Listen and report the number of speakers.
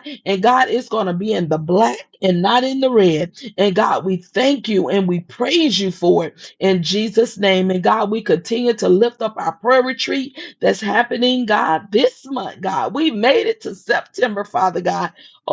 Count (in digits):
1